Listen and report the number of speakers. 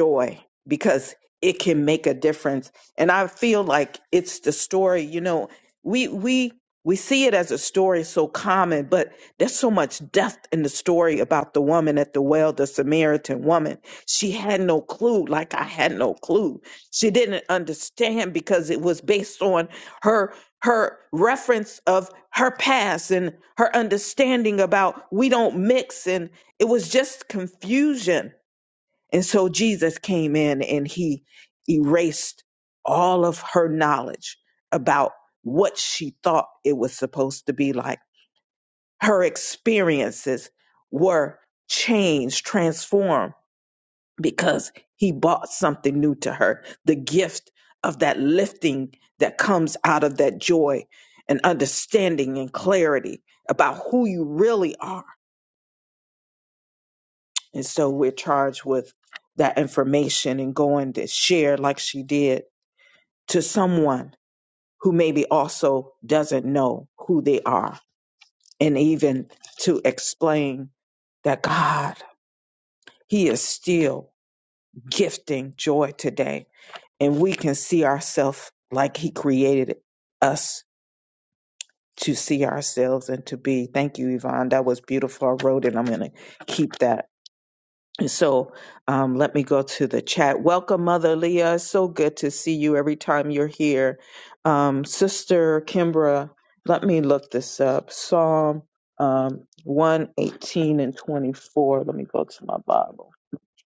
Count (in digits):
1